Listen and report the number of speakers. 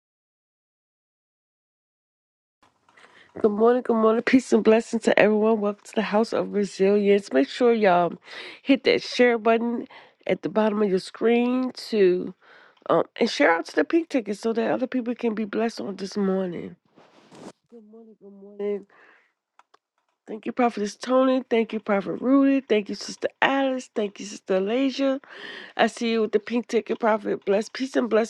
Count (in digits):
1